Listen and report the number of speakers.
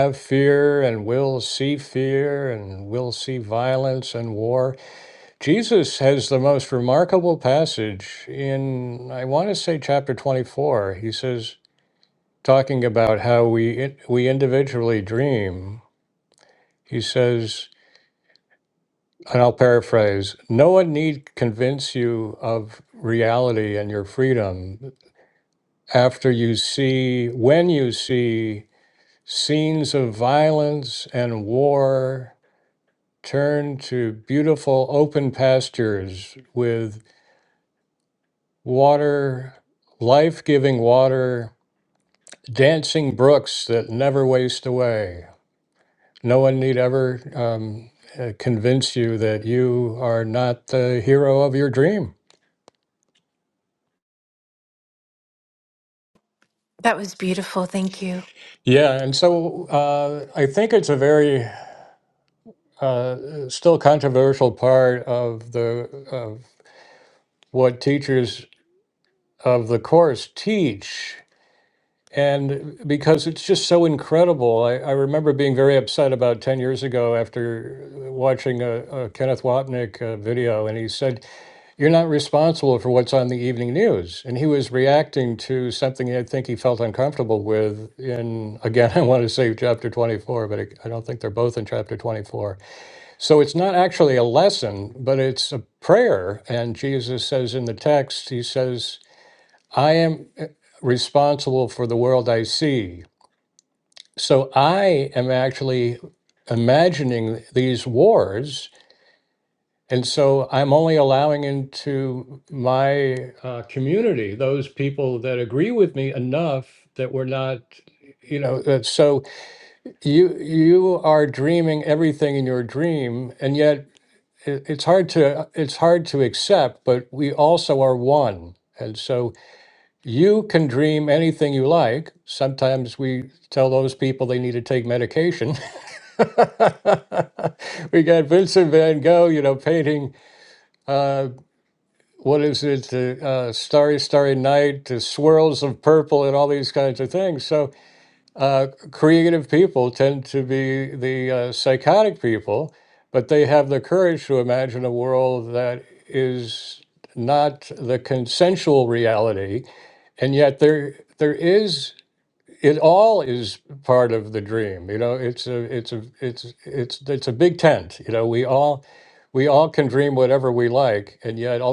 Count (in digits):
2